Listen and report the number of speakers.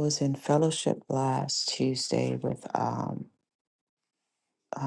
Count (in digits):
1